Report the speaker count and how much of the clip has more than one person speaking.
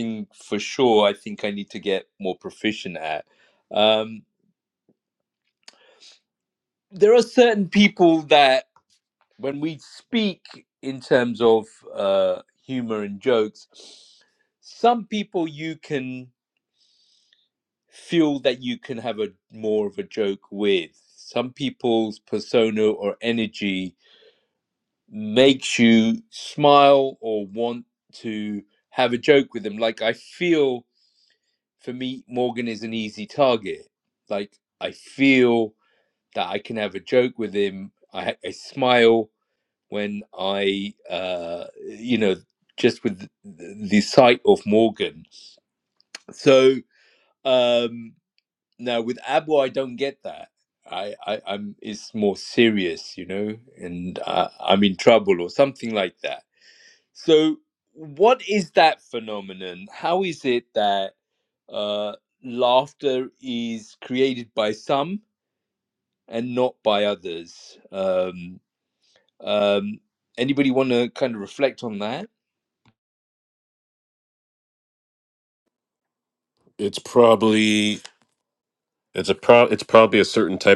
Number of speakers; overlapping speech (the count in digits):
2, no overlap